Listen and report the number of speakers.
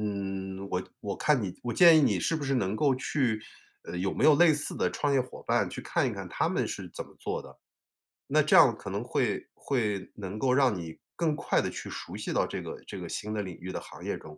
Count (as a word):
one